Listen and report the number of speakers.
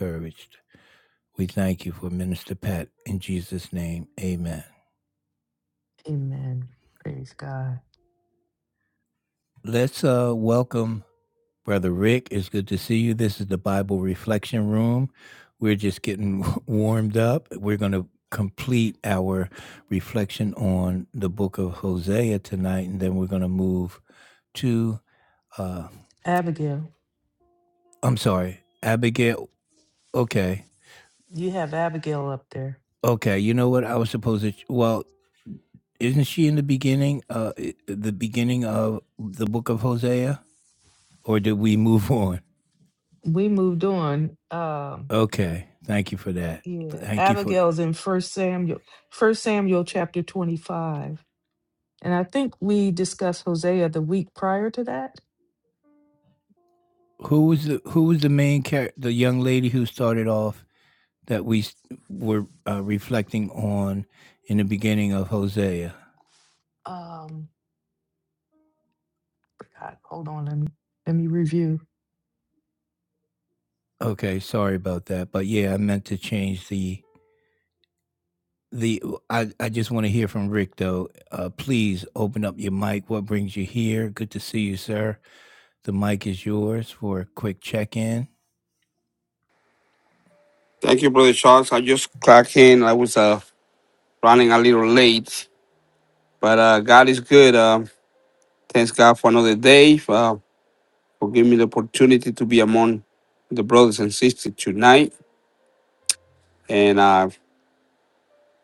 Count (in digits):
3